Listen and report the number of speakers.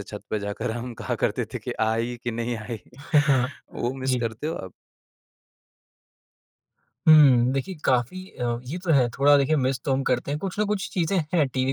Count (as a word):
two